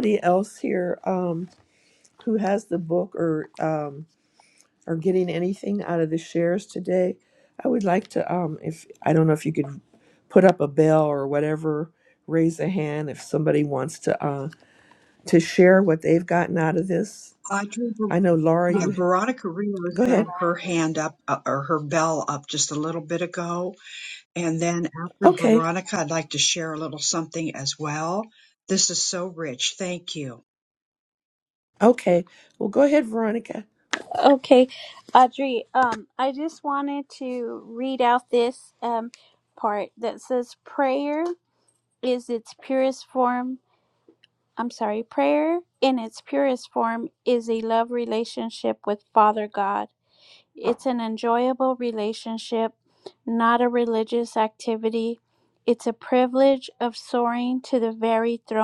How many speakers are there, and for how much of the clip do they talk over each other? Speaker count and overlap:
three, about 2%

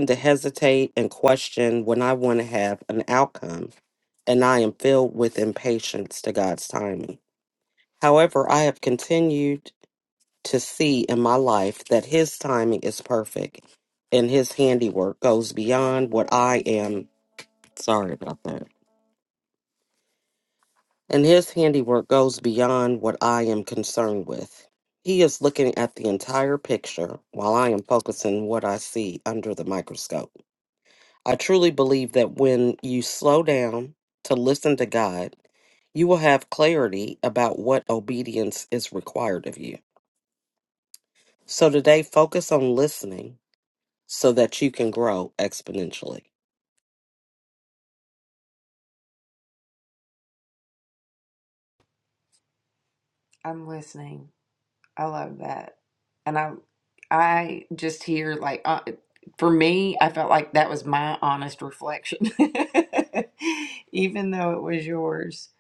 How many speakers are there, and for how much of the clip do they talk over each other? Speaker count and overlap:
two, no overlap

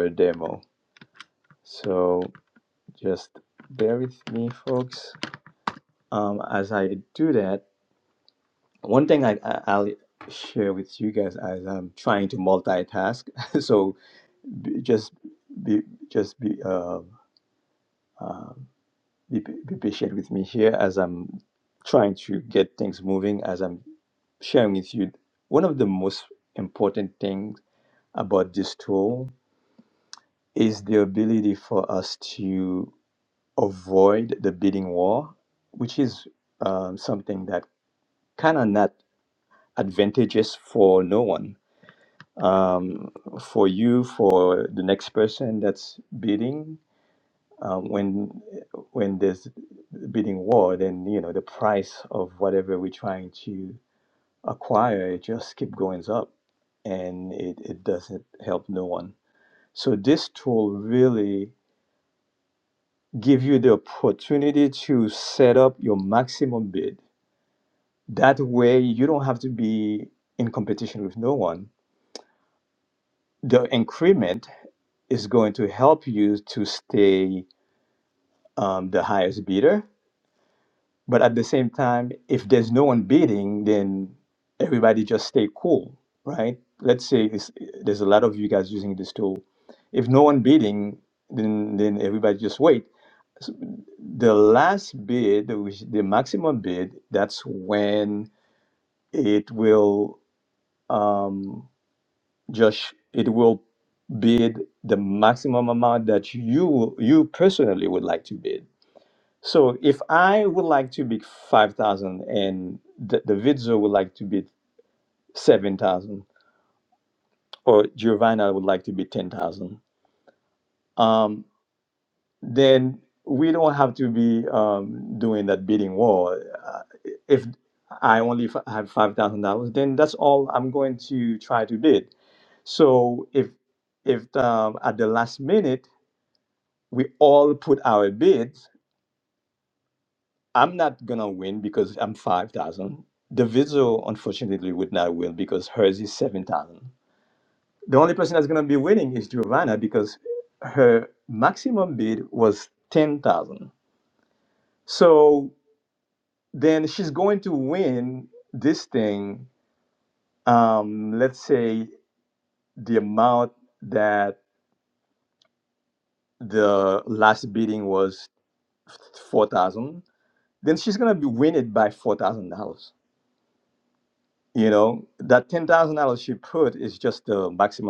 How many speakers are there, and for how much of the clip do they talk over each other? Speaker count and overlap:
one, no overlap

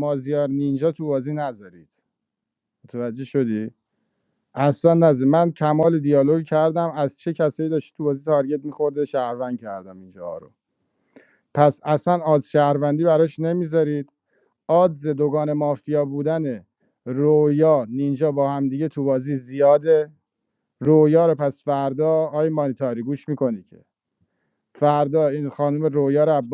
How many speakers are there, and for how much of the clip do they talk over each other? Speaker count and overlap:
one, no overlap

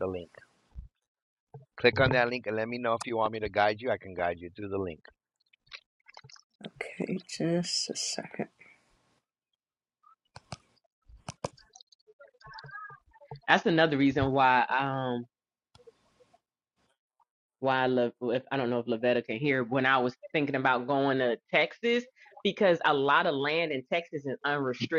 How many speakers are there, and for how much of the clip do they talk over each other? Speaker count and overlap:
three, no overlap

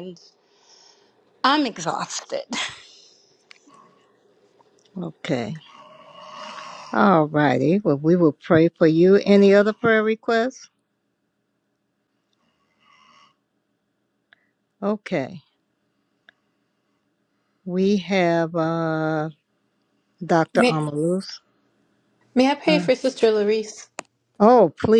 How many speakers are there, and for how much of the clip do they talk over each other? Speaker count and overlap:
three, about 2%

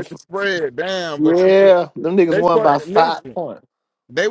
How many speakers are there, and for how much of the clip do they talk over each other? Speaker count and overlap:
two, about 41%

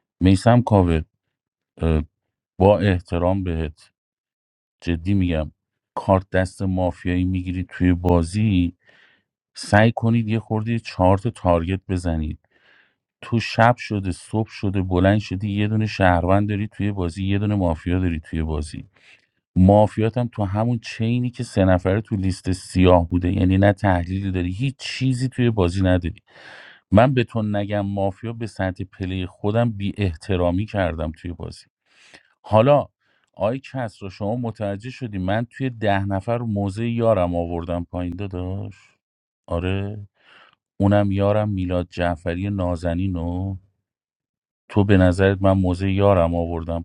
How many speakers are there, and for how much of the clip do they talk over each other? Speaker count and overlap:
one, no overlap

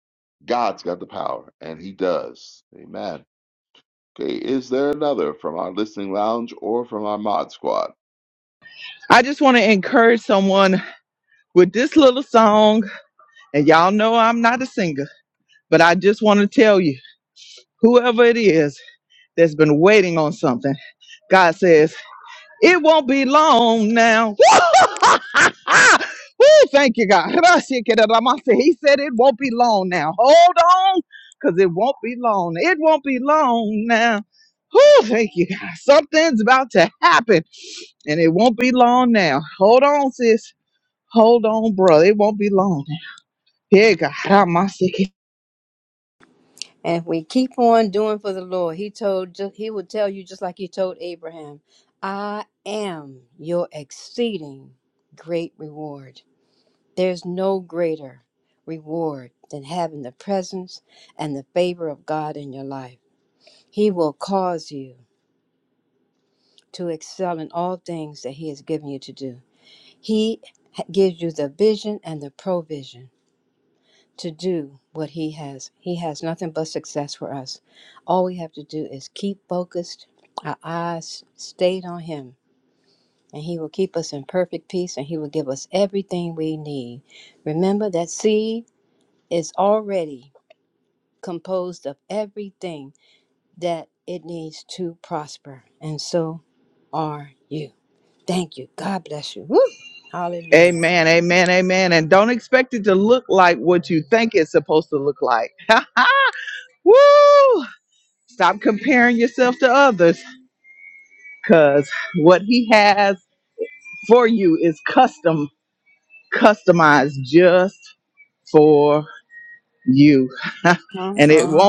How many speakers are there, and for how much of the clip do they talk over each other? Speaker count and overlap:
three, about 1%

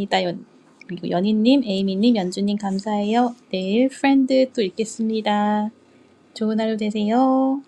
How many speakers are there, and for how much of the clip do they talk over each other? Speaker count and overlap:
one, no overlap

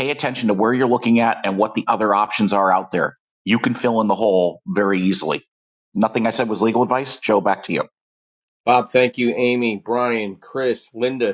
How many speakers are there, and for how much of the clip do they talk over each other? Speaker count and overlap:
two, no overlap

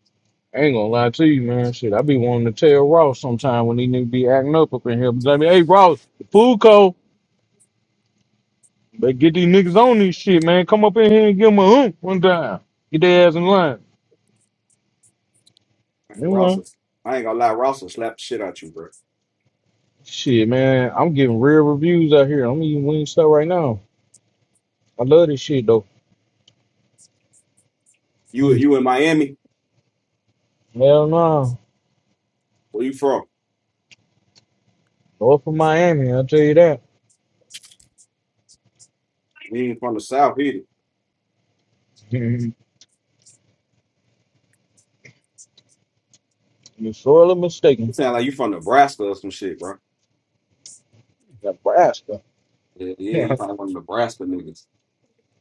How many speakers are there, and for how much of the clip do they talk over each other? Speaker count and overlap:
two, about 1%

